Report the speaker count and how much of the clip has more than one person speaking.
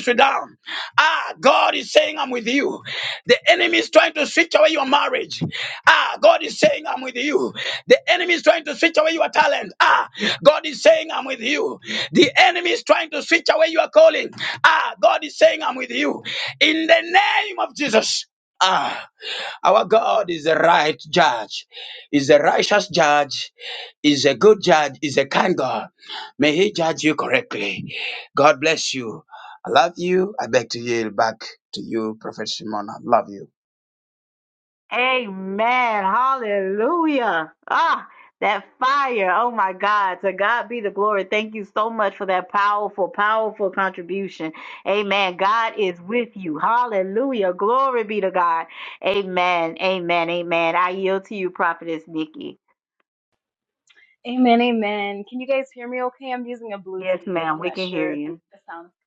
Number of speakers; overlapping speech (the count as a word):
three, about 2%